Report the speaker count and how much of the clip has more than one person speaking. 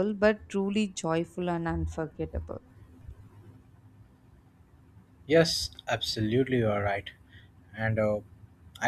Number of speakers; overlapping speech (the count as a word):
two, no overlap